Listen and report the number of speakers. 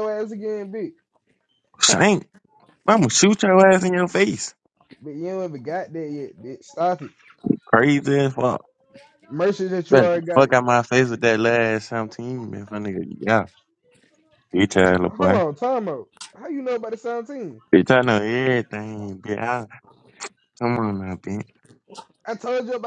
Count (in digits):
2